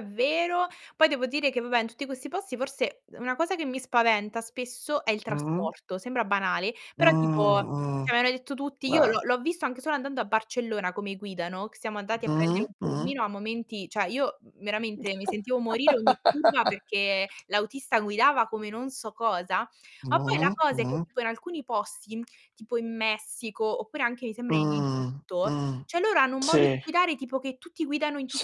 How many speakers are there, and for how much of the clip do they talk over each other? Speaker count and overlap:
two, about 16%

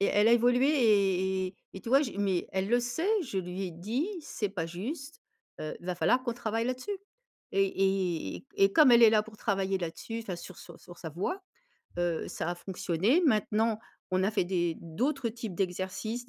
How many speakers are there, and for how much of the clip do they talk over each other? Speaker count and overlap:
one, no overlap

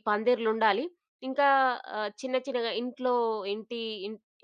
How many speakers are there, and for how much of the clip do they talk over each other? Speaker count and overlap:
one, no overlap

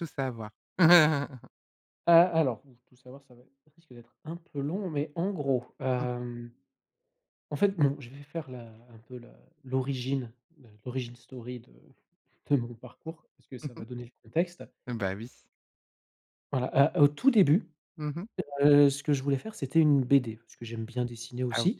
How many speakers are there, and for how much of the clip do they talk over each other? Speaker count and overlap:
two, about 3%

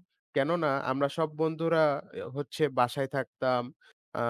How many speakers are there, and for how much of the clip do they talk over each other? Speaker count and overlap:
one, no overlap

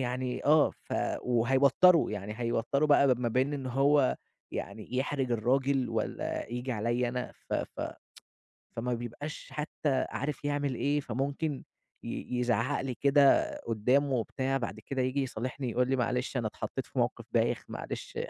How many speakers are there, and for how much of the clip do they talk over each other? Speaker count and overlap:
one, no overlap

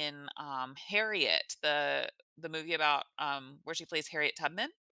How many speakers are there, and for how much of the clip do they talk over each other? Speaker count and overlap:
one, no overlap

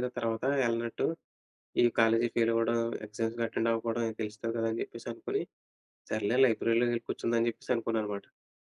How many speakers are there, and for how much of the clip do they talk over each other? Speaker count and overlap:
one, no overlap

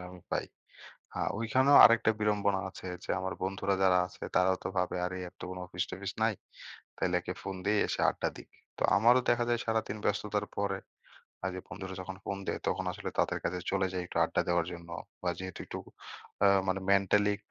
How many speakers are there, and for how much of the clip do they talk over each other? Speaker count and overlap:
one, no overlap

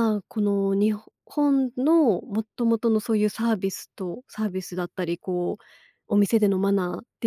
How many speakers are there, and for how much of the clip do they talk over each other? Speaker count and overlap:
one, no overlap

